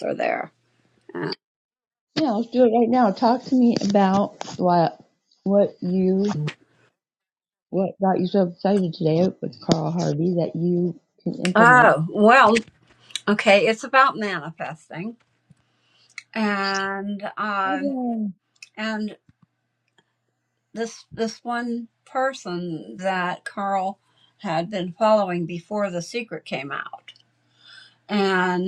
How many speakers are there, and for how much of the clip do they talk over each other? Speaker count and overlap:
two, about 2%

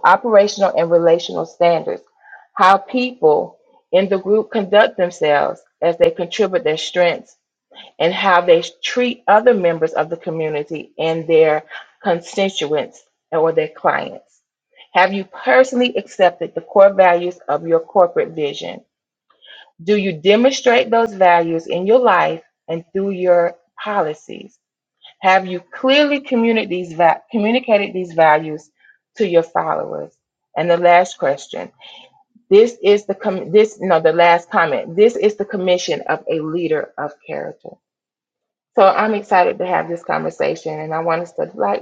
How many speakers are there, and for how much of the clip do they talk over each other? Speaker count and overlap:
one, no overlap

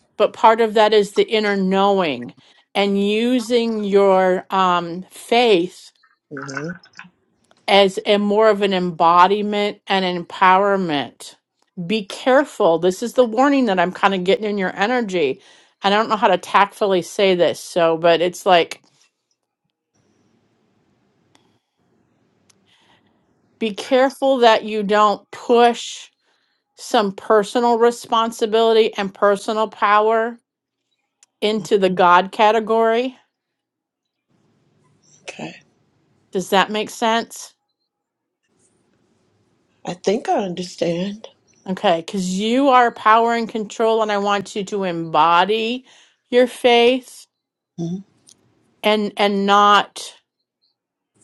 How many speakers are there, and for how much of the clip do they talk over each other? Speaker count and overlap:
two, no overlap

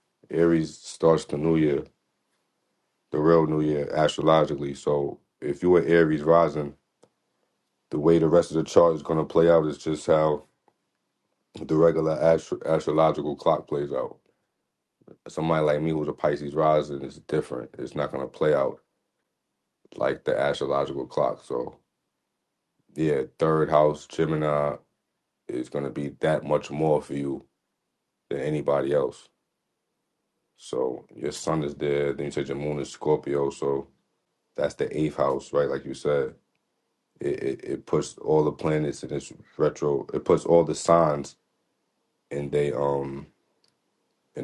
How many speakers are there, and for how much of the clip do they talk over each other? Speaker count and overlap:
one, no overlap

